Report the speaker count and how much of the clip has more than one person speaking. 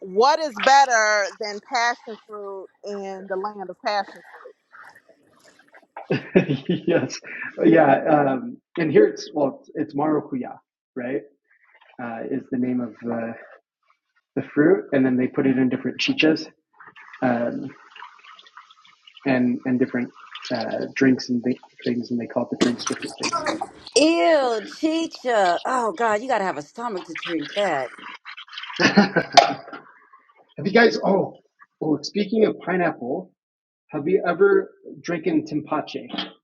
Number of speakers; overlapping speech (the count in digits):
3, no overlap